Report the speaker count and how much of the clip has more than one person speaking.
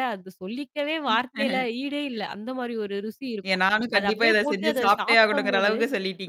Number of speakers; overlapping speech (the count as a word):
two, about 31%